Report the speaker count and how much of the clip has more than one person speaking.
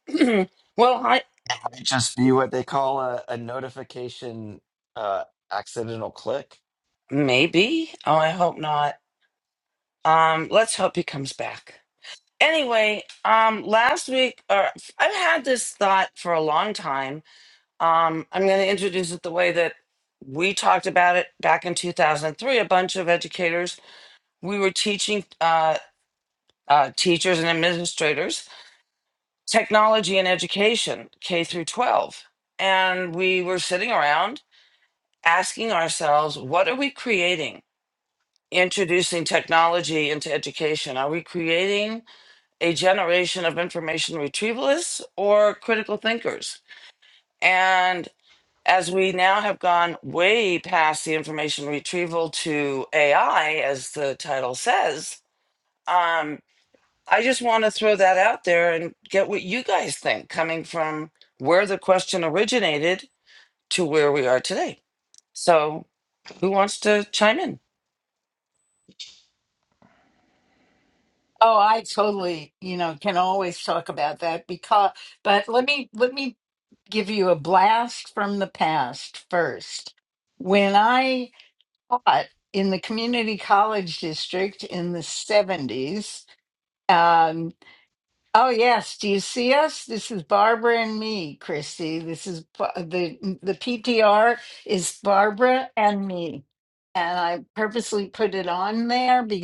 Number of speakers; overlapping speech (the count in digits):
3, no overlap